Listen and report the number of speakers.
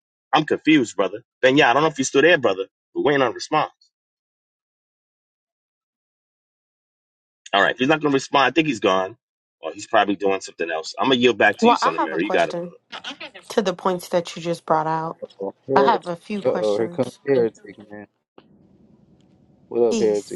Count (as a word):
three